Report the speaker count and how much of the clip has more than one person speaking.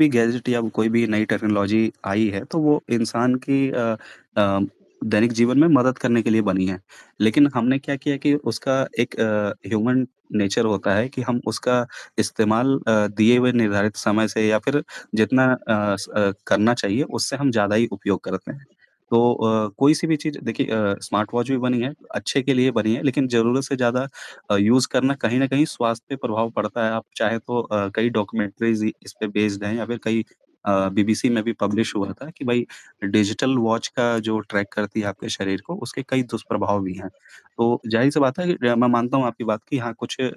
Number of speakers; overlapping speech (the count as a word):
one, no overlap